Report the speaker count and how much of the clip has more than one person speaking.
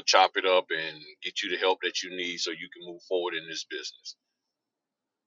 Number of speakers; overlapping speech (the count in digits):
1, no overlap